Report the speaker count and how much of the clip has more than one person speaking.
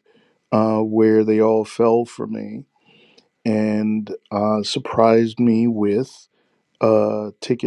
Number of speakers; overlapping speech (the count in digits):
1, no overlap